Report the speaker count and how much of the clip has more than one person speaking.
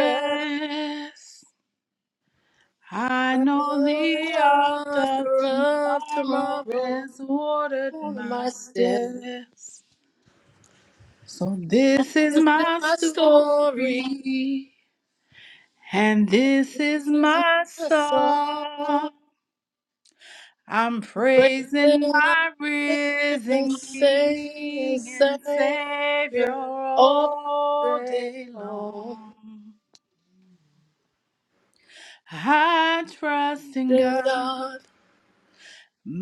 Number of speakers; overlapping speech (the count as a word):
two, about 37%